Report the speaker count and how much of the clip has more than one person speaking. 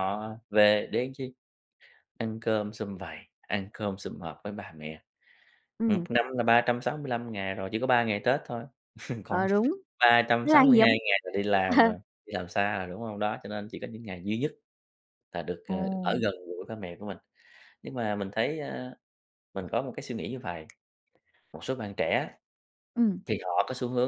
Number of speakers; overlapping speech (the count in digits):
2, about 6%